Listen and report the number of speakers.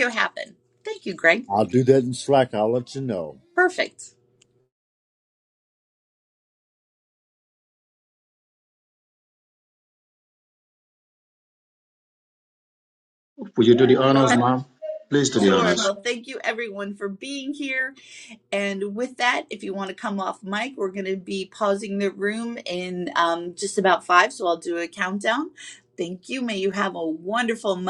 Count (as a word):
three